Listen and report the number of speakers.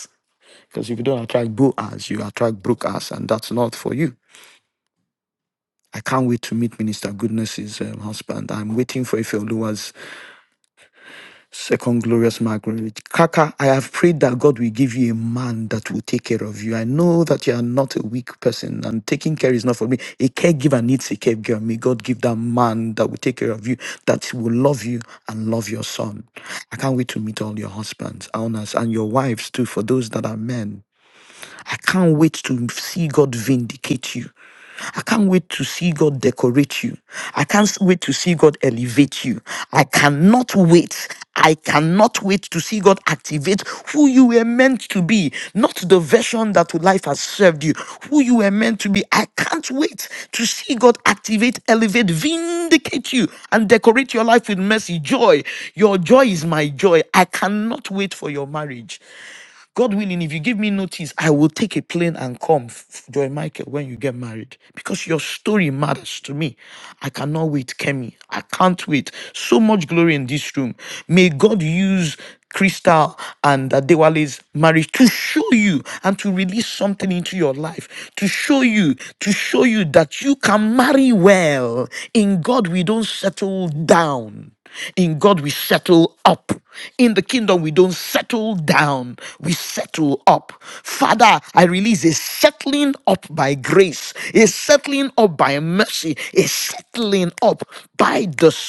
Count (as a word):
one